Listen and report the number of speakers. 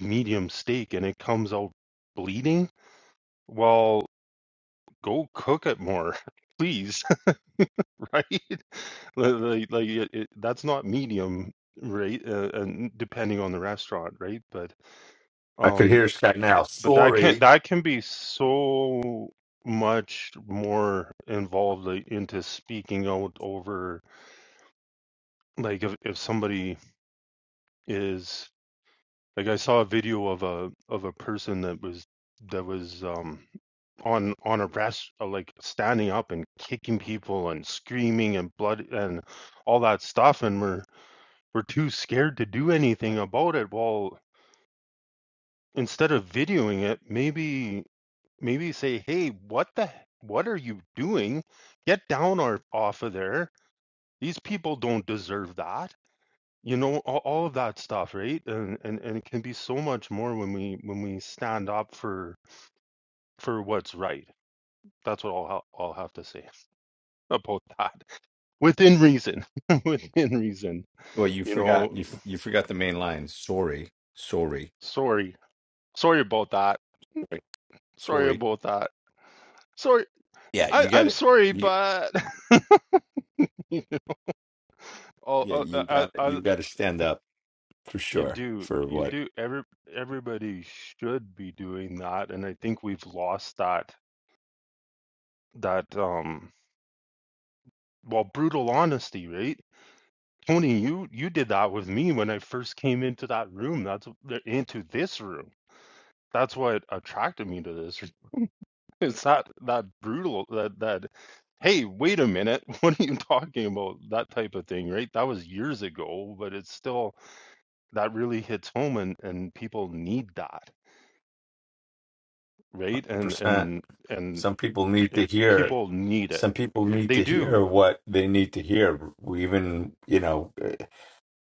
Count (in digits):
2